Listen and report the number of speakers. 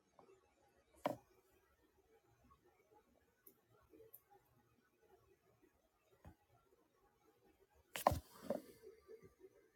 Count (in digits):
0